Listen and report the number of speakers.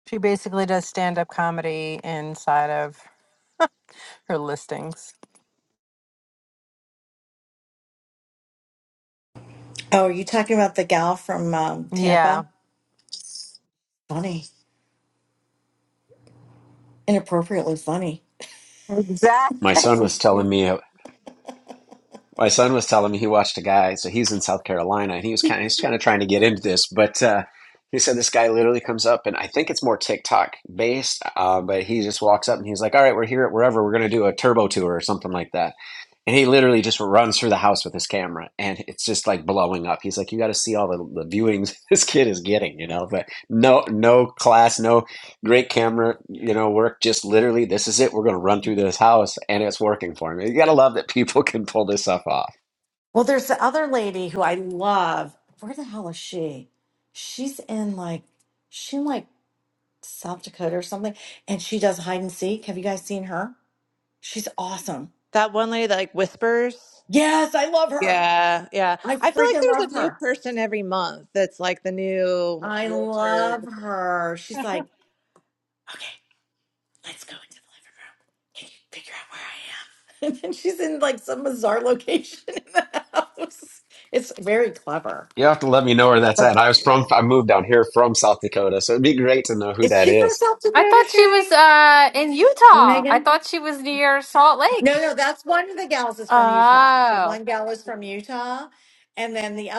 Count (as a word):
five